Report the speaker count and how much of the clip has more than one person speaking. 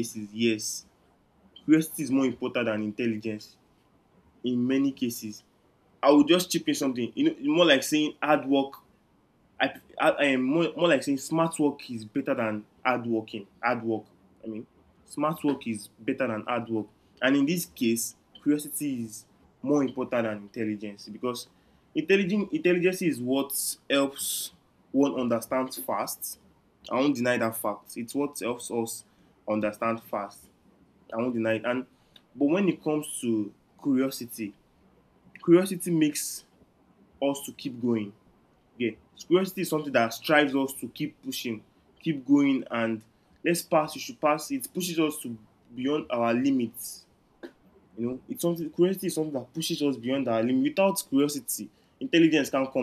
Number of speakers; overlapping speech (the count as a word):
one, no overlap